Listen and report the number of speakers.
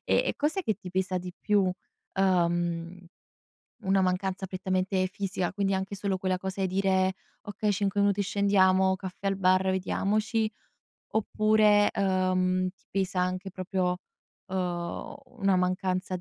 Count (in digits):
1